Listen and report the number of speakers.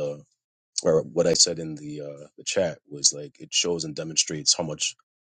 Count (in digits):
1